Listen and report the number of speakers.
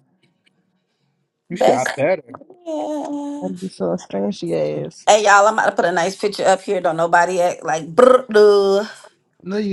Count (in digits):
3